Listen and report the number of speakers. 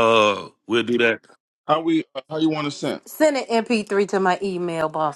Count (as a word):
three